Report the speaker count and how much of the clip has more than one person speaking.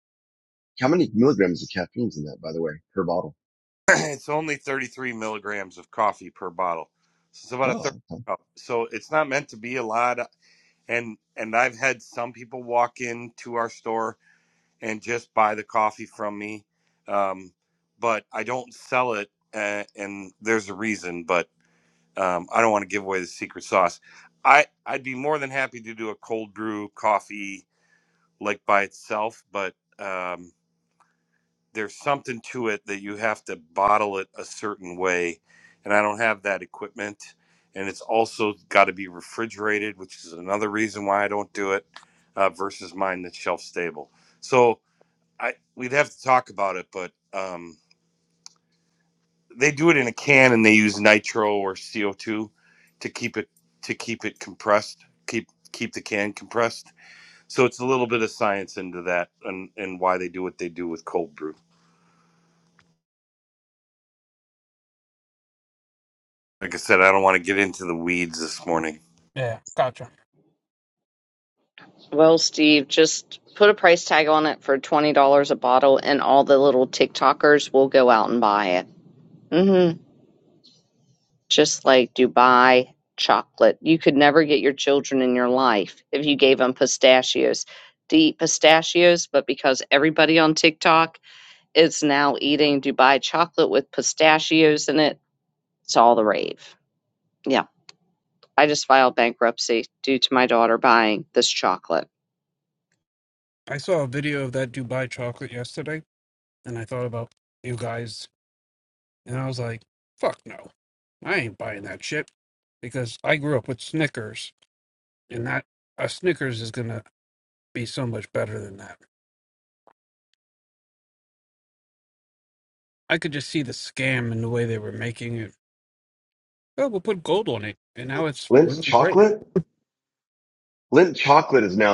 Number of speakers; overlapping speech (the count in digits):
4, about 1%